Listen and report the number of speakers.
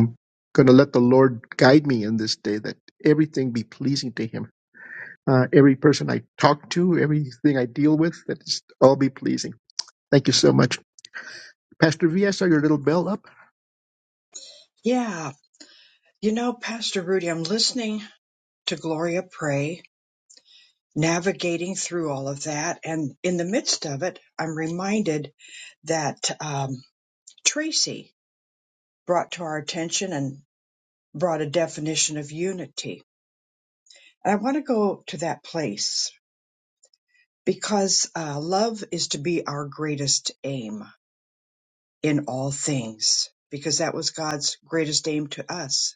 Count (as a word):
two